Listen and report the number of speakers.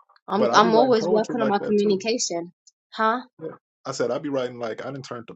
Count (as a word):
two